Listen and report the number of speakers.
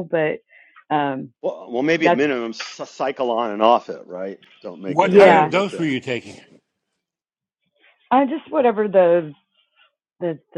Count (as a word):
three